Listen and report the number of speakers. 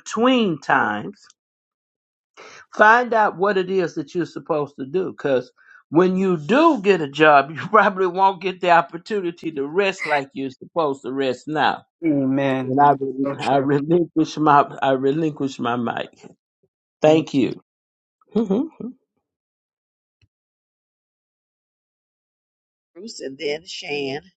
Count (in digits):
3